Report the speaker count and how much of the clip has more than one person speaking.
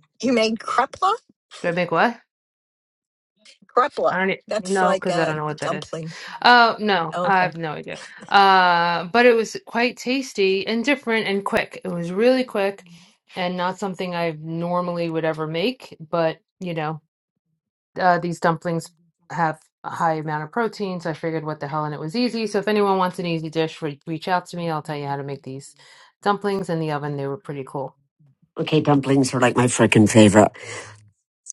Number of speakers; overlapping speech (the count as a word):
three, about 5%